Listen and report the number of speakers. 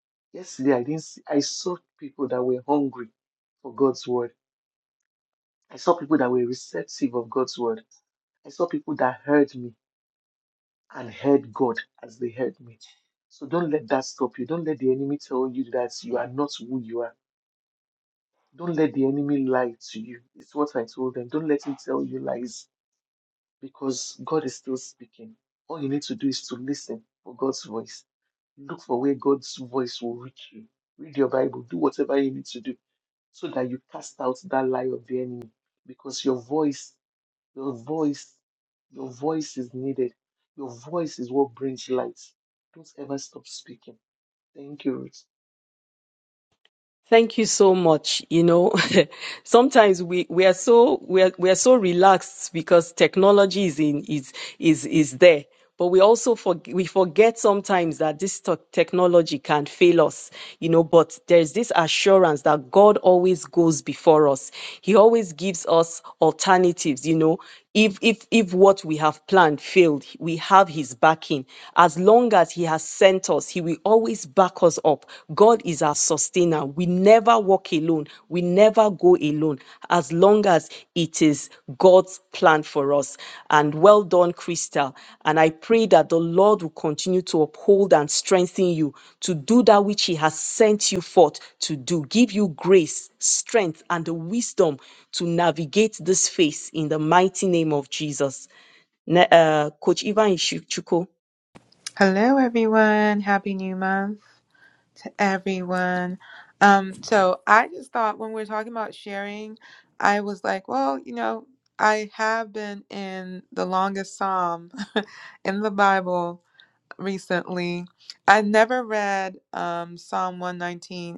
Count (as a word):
three